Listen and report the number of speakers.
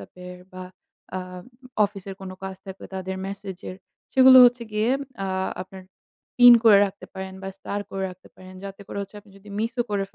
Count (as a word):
one